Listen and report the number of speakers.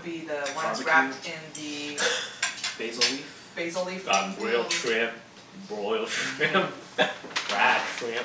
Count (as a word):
three